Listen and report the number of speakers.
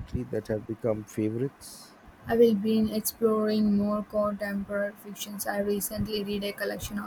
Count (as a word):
two